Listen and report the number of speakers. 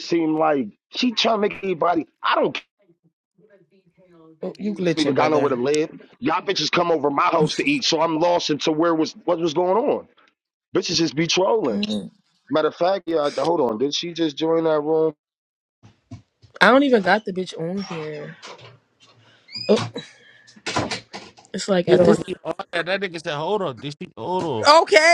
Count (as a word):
three